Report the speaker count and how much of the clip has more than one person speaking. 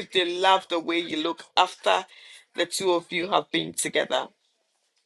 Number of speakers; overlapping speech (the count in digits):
1, no overlap